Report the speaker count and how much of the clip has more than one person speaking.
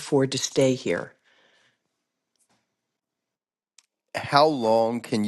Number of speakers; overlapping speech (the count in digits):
2, no overlap